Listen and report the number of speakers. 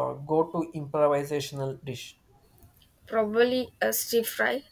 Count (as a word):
two